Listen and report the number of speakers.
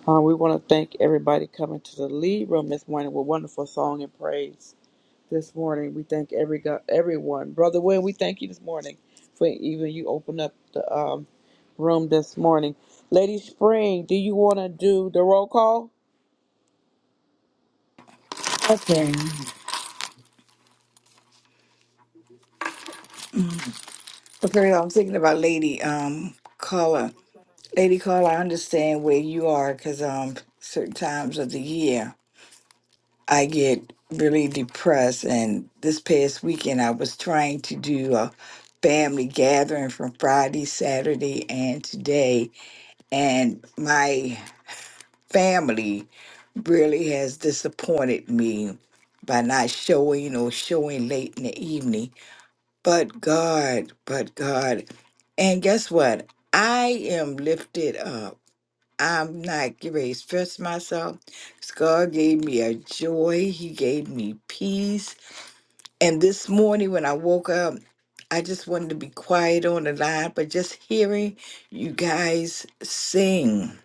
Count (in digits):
2